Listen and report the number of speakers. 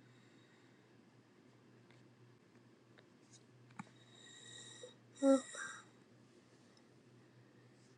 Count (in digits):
0